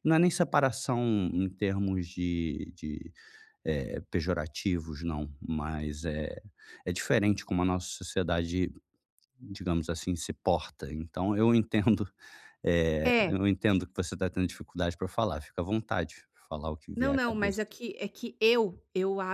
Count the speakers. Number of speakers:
2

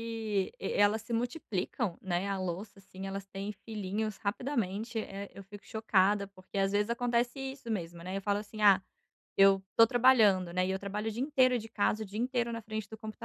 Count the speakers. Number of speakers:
1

